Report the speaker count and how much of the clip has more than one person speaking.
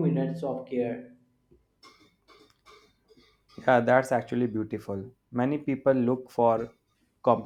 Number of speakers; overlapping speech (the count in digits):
2, no overlap